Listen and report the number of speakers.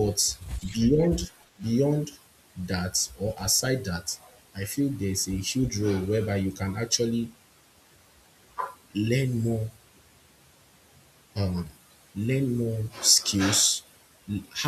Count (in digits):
1